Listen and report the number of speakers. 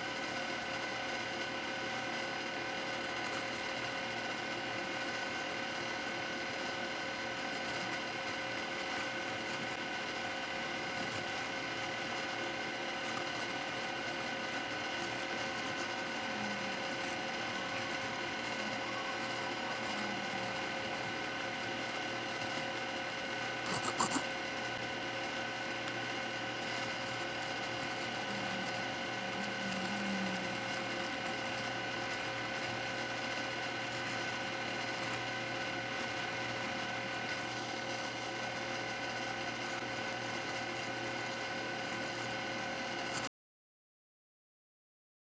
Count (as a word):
zero